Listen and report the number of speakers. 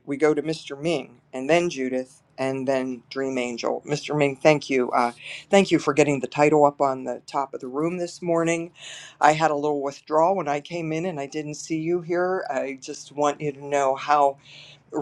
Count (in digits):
1